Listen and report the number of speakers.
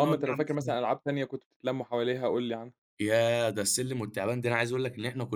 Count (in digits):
2